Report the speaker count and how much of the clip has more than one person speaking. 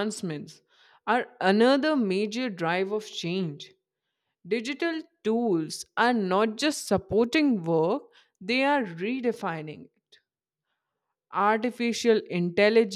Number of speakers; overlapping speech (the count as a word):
one, no overlap